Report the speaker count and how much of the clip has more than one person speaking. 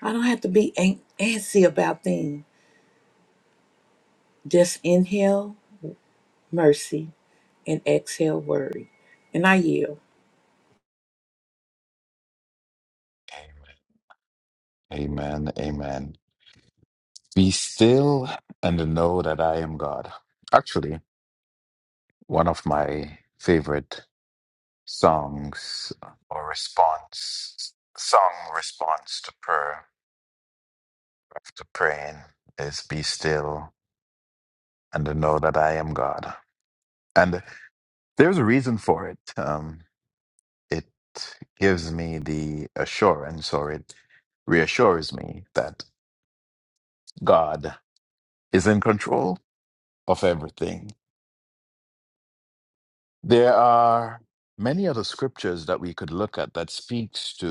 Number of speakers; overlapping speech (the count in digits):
2, no overlap